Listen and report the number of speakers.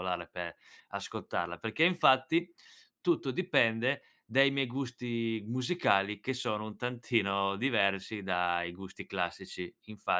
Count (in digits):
1